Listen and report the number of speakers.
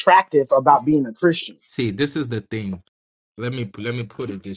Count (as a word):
two